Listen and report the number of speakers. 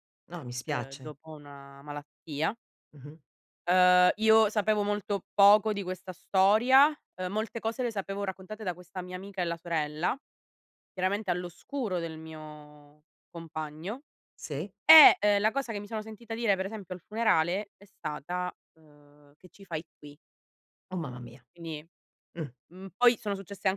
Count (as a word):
two